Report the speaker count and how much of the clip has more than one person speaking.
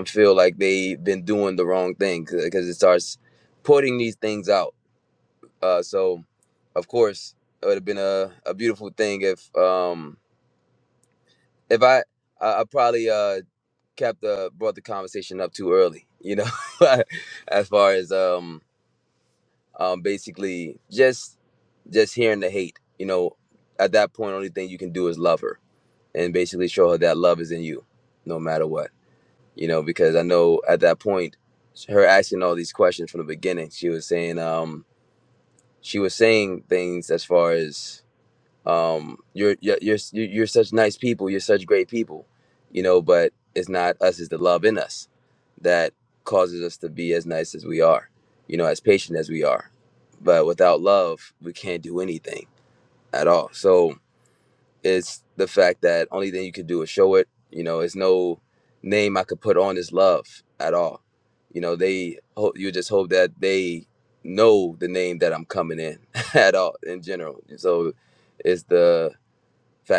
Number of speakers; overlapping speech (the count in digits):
1, no overlap